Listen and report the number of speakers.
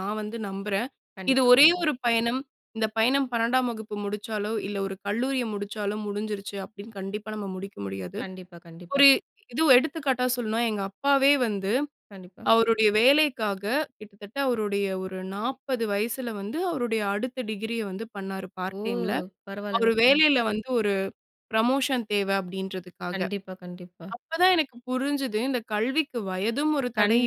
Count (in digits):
2